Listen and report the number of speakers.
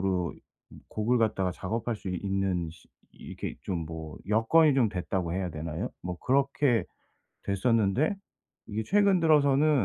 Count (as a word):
one